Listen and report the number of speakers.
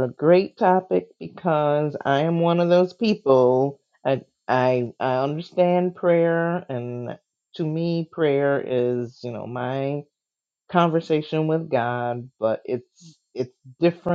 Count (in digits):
1